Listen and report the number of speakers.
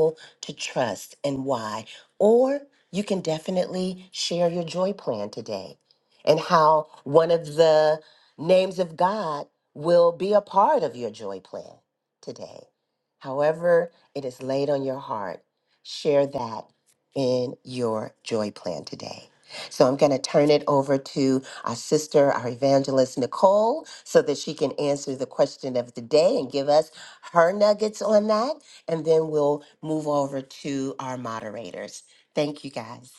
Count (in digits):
1